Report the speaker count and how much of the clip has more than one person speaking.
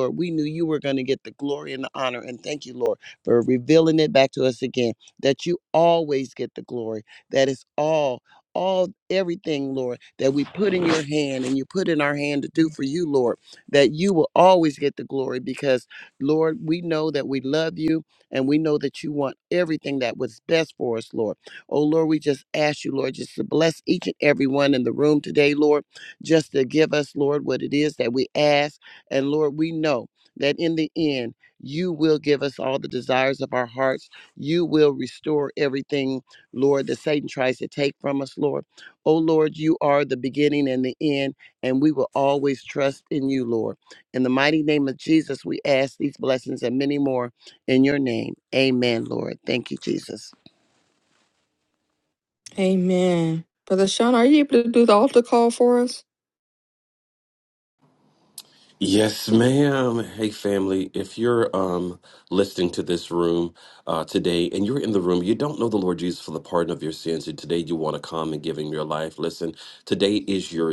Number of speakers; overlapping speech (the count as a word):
three, no overlap